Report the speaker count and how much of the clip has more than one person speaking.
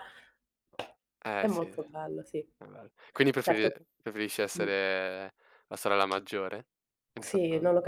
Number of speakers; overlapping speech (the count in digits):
2, about 10%